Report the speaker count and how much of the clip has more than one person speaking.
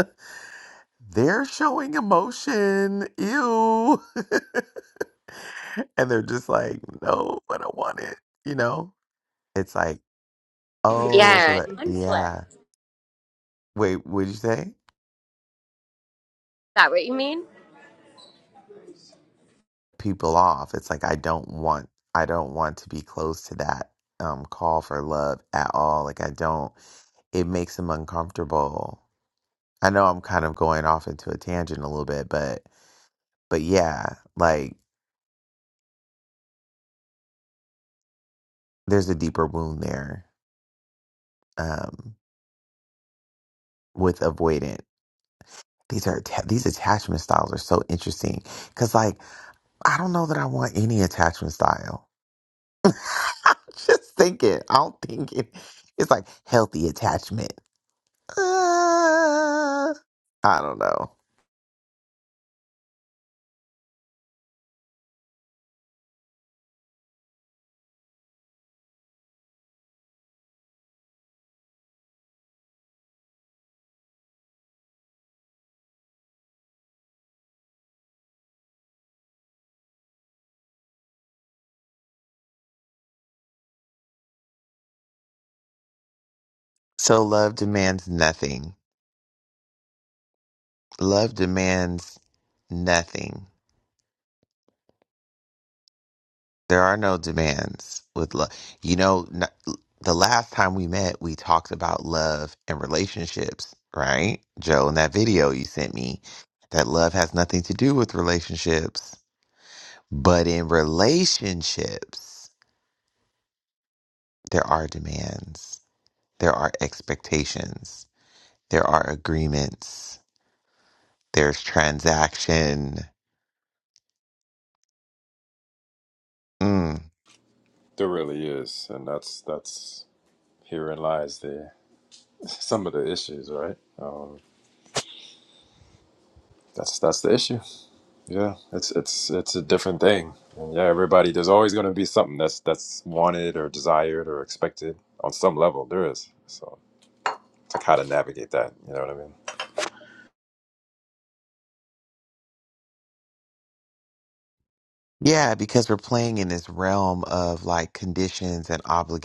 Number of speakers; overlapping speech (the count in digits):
3, about 1%